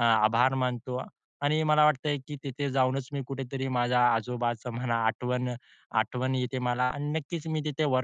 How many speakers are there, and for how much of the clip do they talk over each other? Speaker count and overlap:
one, no overlap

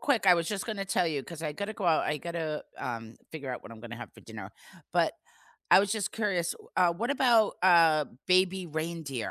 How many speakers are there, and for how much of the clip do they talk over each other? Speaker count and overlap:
one, no overlap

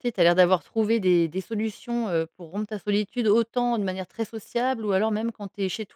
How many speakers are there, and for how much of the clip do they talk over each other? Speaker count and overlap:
one, no overlap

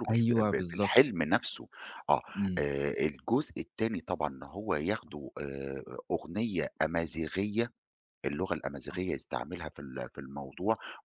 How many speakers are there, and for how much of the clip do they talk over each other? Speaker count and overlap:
two, about 11%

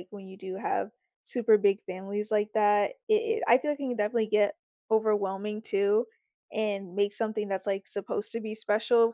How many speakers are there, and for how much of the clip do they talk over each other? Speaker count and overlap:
one, no overlap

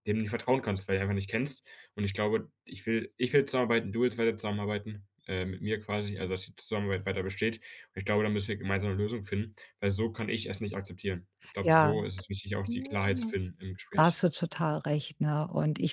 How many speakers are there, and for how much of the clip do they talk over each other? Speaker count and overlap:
two, about 4%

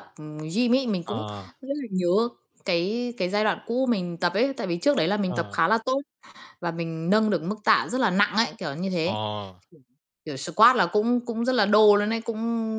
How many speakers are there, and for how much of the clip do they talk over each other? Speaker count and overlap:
two, about 5%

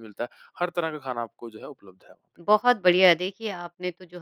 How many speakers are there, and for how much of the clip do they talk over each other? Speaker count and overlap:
two, no overlap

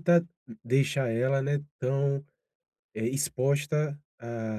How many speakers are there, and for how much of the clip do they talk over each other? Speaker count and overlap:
one, no overlap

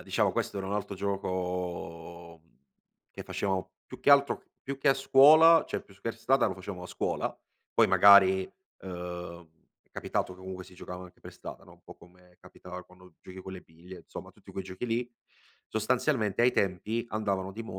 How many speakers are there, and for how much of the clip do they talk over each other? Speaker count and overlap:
one, no overlap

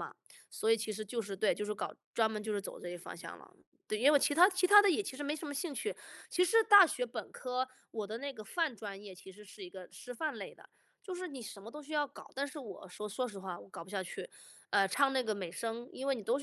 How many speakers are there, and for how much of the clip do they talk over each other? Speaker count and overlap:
one, no overlap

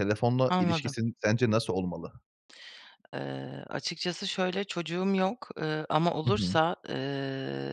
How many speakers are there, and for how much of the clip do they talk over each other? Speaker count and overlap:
two, about 10%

